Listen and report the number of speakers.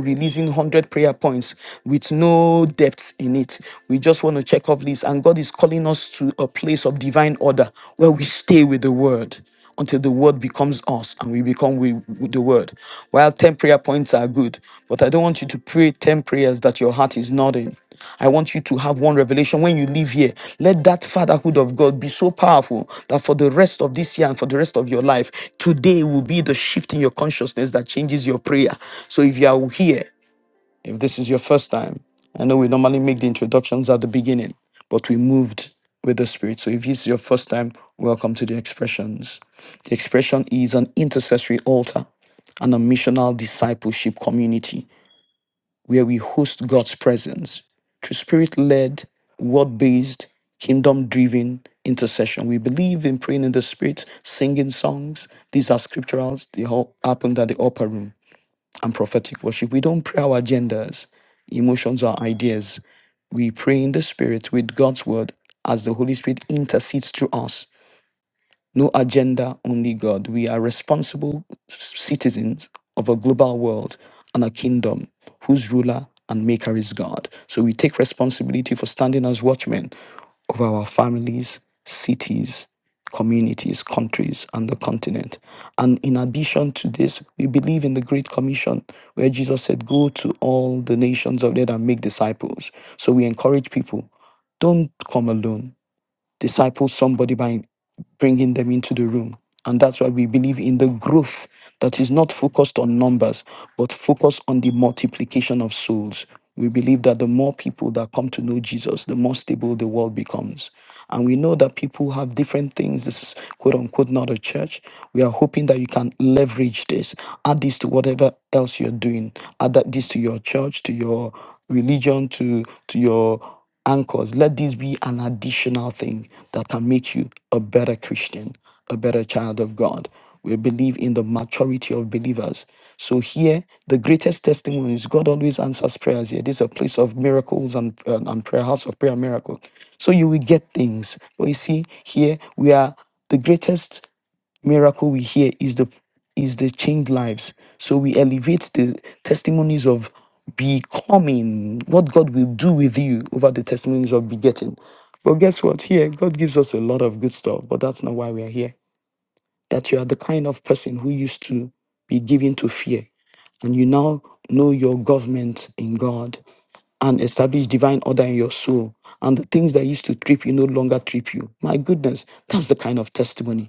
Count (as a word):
one